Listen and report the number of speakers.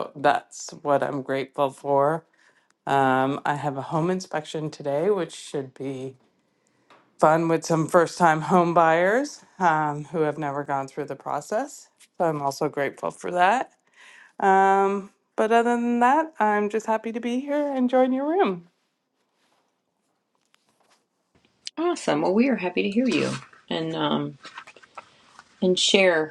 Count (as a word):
two